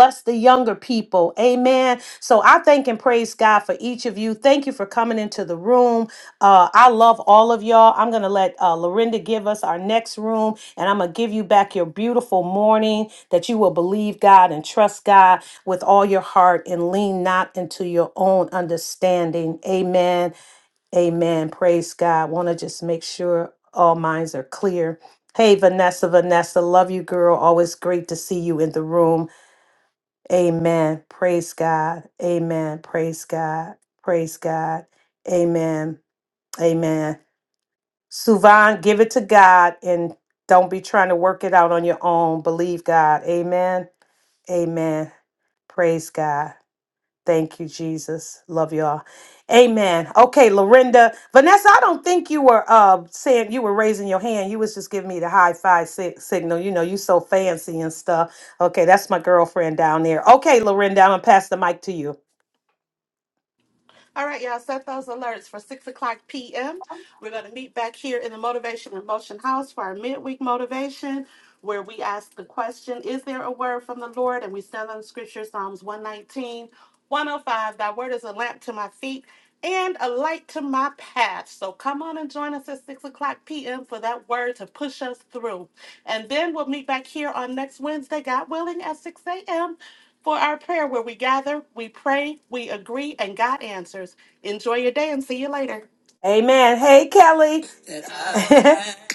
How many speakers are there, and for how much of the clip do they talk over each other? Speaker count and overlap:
2, no overlap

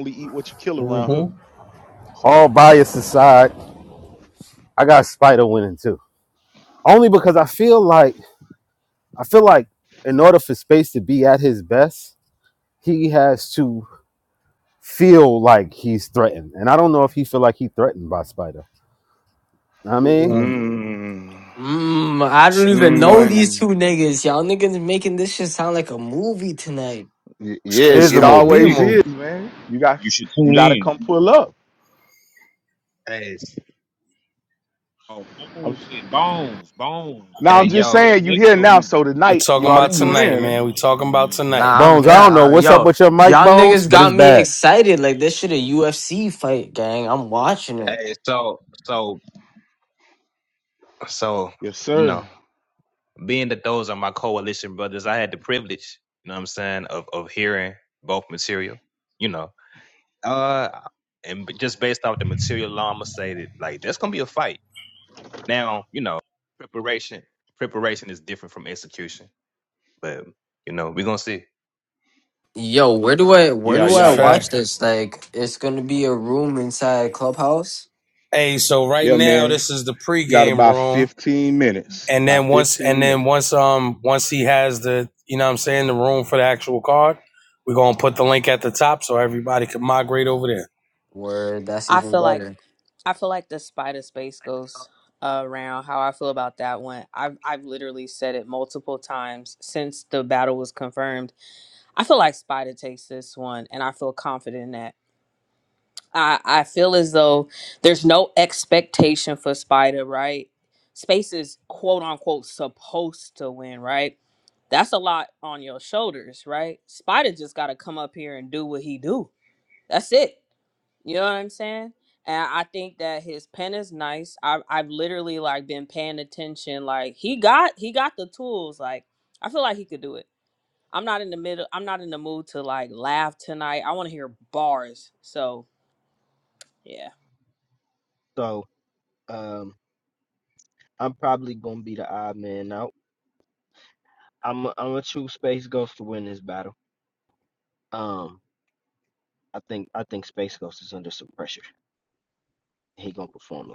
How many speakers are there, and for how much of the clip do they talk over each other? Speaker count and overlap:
8, about 9%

